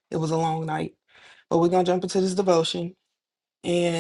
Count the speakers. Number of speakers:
1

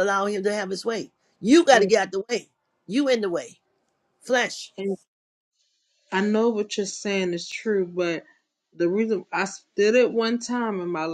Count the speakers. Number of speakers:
2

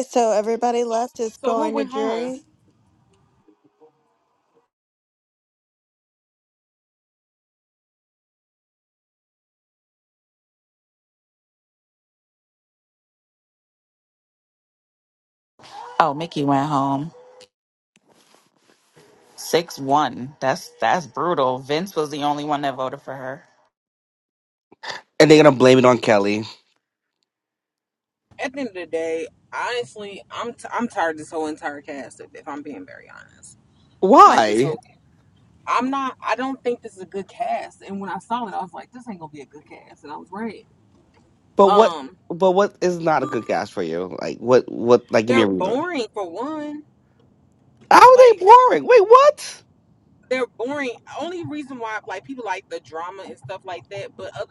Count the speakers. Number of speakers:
4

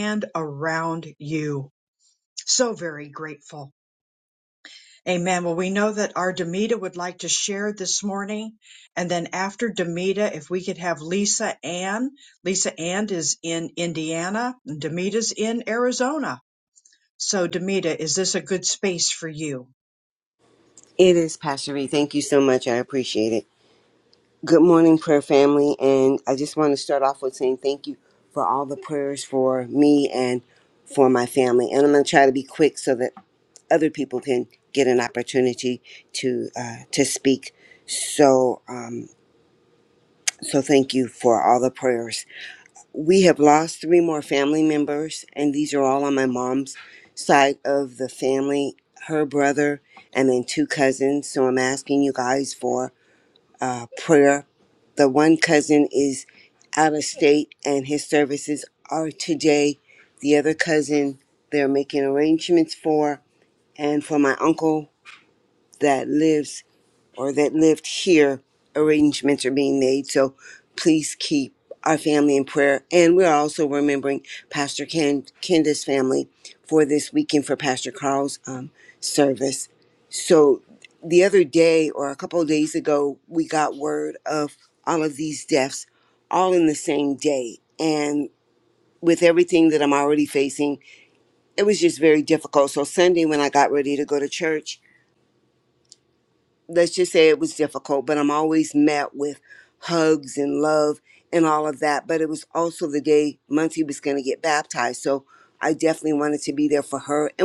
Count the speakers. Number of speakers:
2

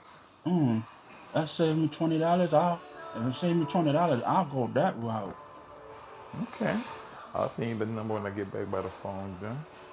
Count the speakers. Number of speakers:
2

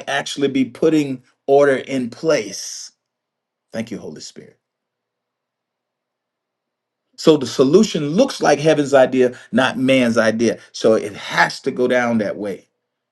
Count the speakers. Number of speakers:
1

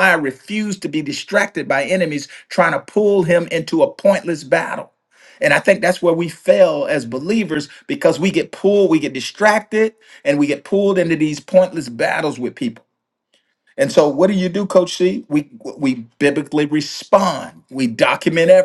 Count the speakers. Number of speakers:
1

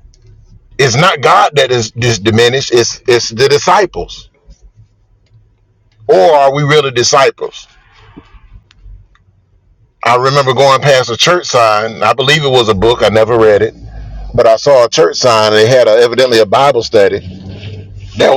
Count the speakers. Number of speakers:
1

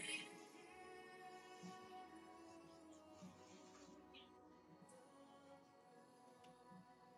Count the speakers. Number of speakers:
0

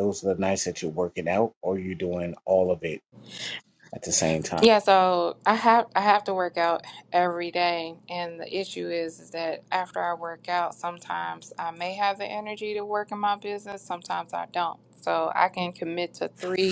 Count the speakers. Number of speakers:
2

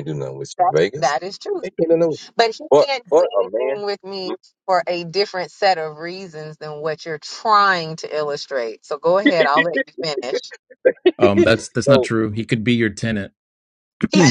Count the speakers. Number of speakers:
3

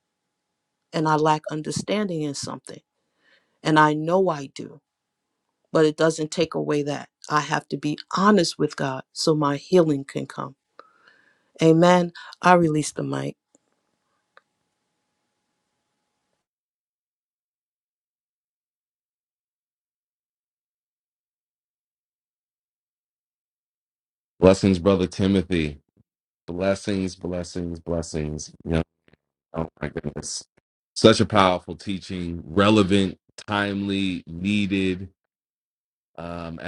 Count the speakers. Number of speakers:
2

